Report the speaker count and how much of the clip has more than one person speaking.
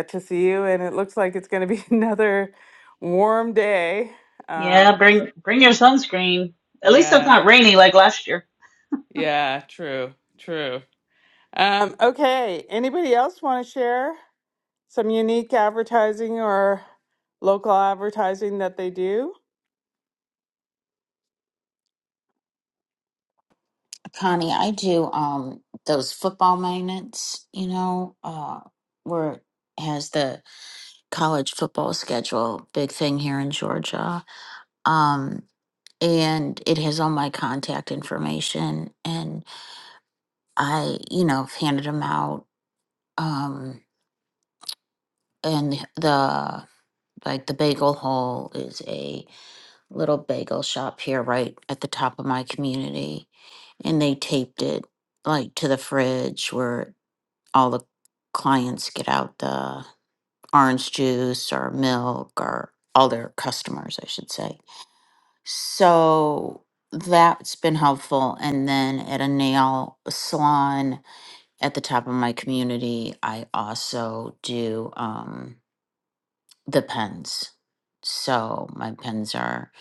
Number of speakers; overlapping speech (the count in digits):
3, about 1%